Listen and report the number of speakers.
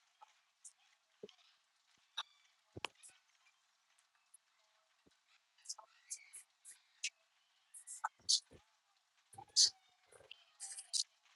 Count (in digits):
0